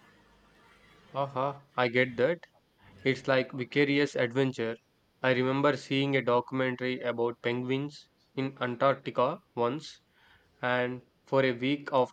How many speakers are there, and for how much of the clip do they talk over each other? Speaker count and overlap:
one, no overlap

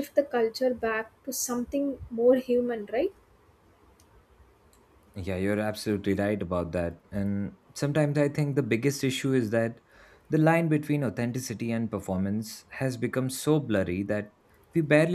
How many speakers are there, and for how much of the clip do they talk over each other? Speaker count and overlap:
two, no overlap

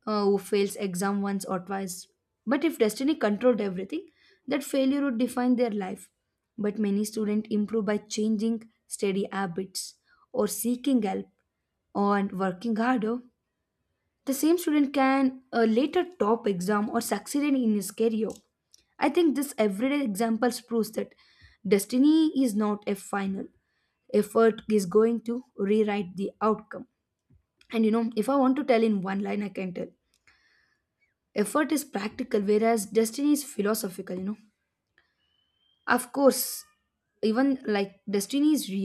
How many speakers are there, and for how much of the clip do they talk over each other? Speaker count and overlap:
one, no overlap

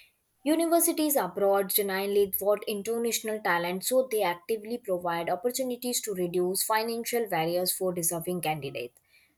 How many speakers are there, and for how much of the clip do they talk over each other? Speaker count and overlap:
one, no overlap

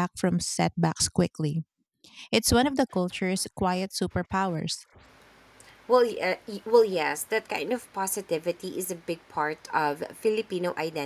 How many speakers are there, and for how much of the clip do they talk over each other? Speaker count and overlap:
two, no overlap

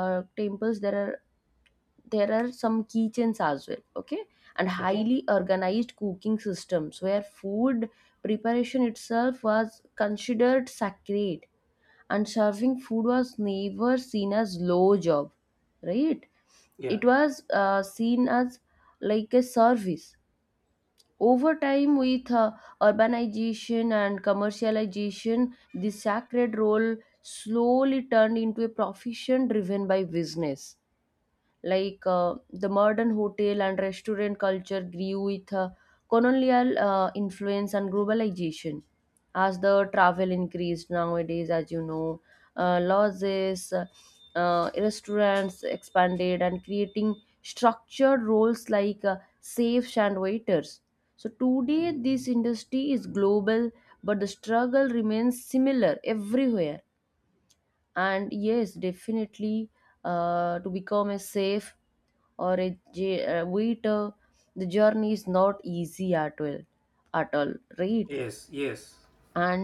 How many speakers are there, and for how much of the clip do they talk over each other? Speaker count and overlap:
two, about 1%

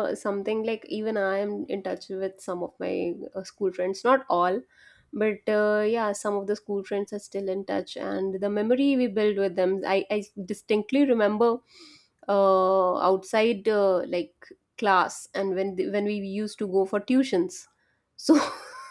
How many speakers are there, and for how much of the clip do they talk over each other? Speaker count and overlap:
one, no overlap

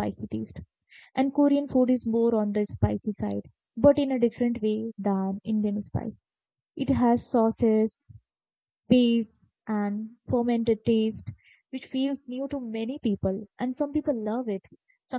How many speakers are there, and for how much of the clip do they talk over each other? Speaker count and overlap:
one, no overlap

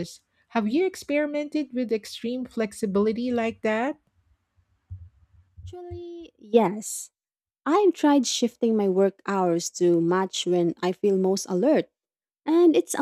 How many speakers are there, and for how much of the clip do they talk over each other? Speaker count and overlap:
two, no overlap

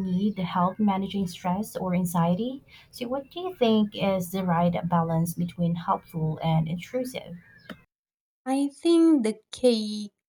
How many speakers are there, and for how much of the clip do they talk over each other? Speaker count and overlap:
two, no overlap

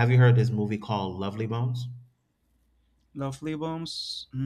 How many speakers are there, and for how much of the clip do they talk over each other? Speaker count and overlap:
two, no overlap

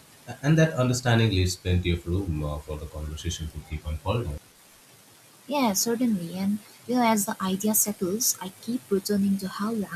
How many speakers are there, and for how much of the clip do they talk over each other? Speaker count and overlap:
two, no overlap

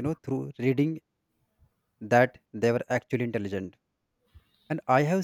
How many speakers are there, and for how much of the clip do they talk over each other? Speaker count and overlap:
one, no overlap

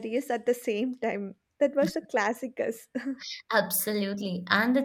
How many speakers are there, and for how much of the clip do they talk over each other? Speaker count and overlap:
two, no overlap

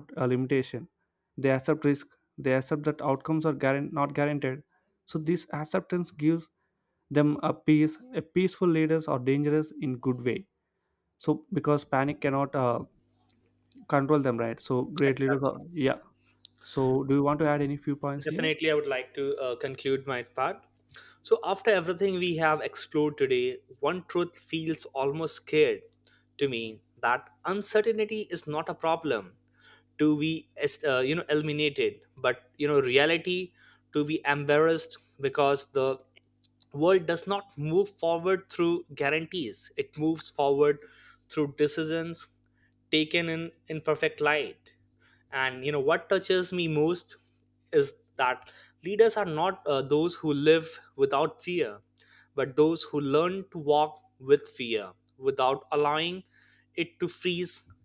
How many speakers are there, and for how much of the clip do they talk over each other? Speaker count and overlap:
two, about 1%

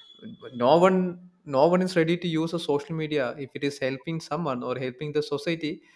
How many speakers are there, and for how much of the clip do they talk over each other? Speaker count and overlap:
one, no overlap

